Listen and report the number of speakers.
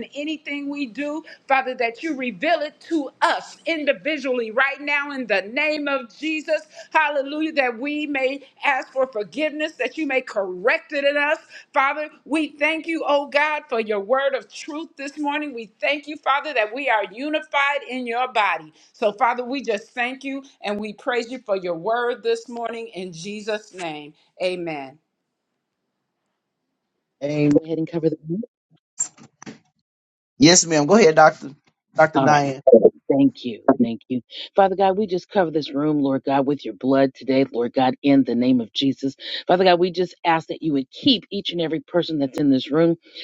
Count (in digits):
3